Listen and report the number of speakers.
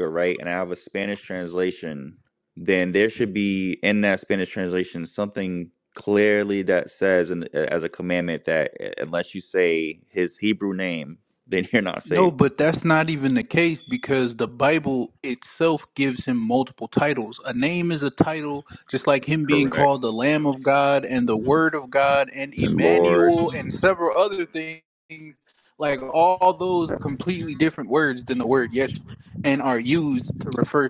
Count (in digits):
2